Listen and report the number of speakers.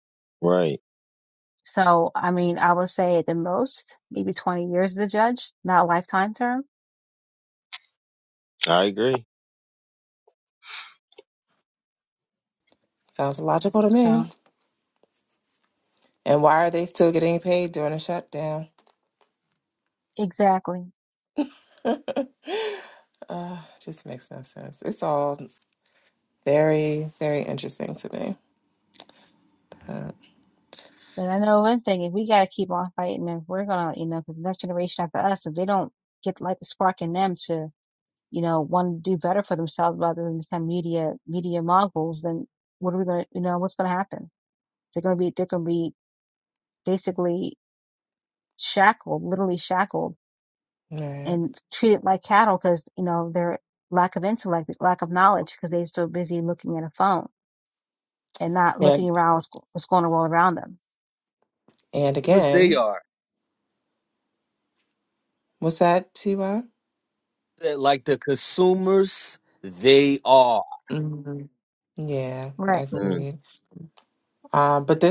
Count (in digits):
4